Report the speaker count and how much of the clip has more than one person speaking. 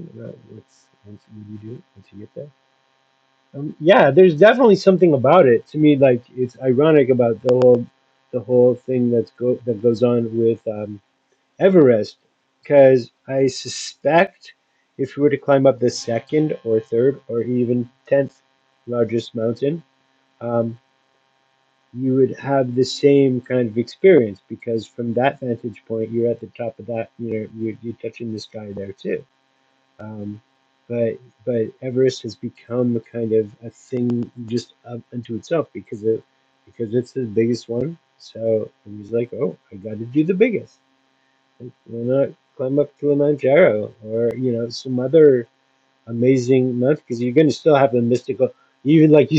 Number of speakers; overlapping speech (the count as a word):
one, no overlap